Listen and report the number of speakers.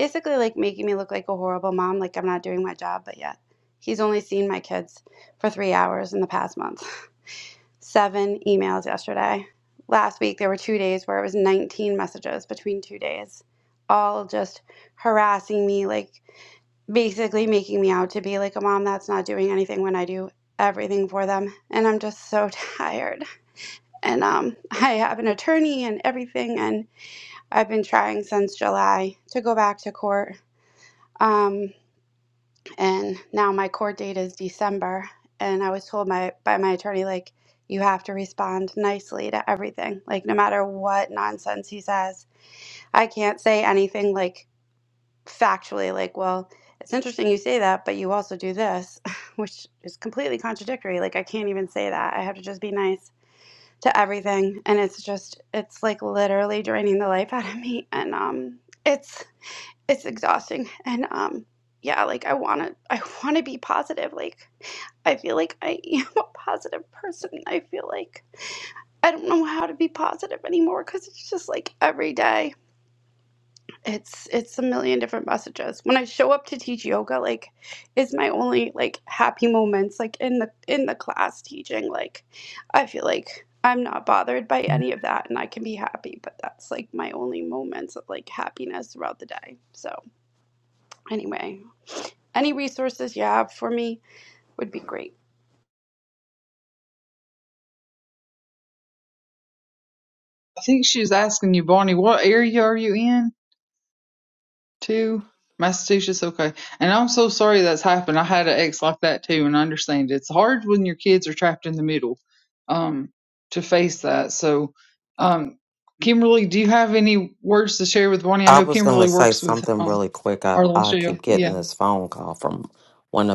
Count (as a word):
three